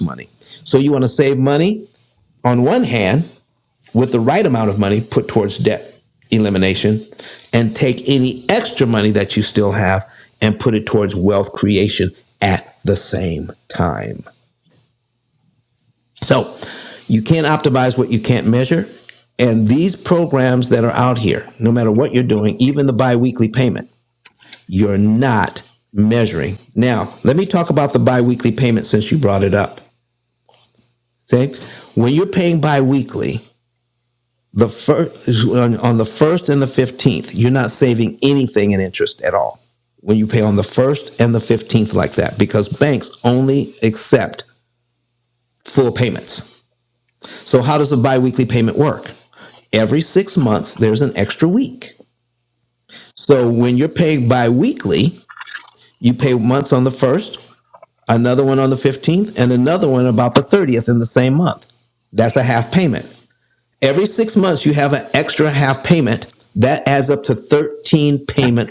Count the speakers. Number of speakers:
1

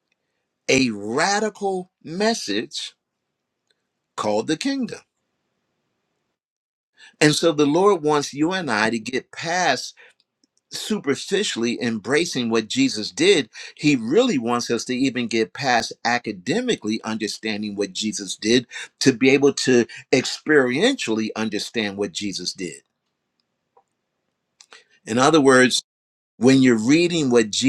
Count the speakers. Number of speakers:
1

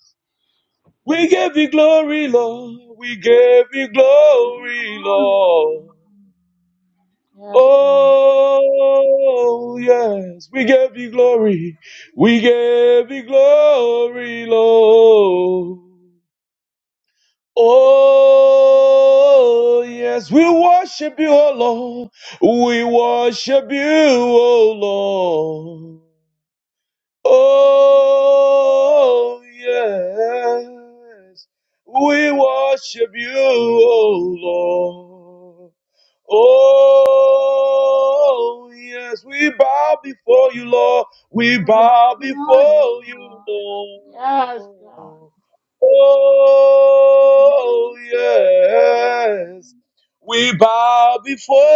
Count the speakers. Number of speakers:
2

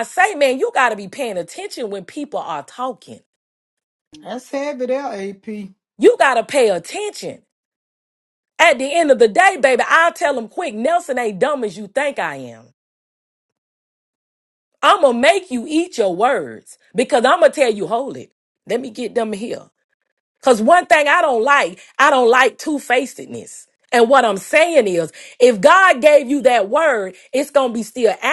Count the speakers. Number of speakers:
2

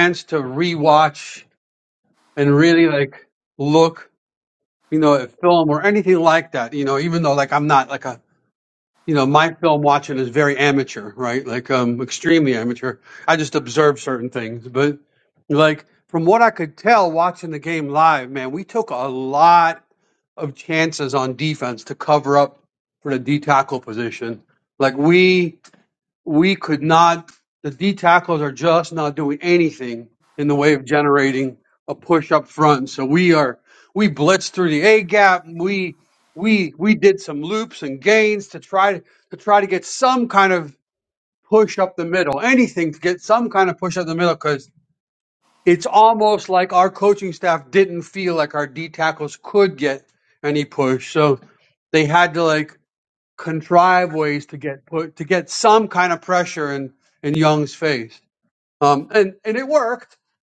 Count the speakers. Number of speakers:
1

